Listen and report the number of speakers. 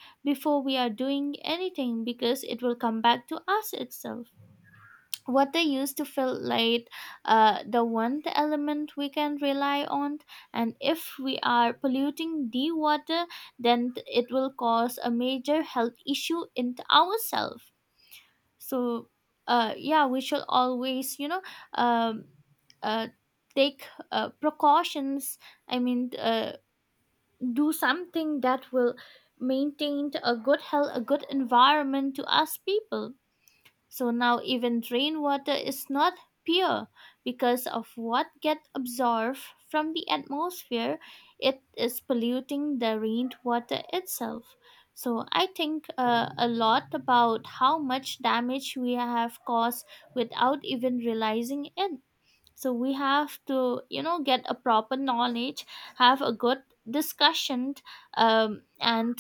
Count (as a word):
one